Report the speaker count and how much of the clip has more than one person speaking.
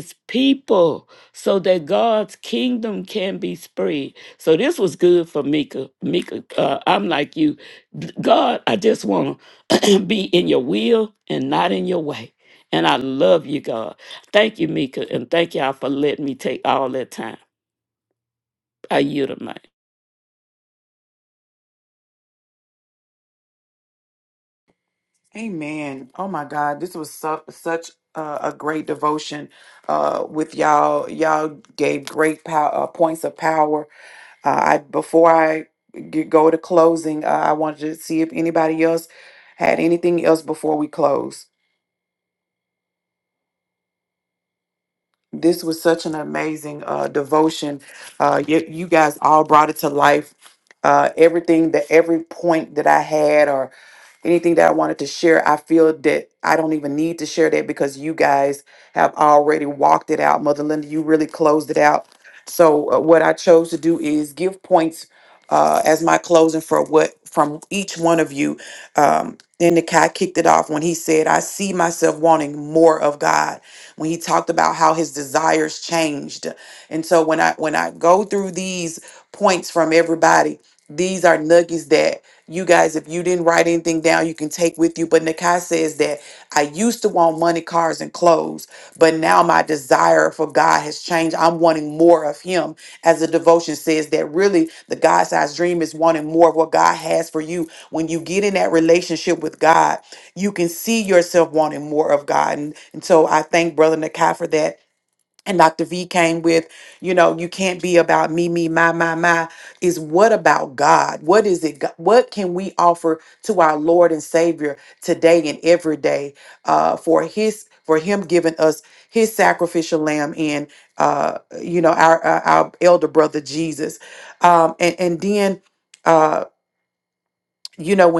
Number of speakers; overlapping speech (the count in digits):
2, no overlap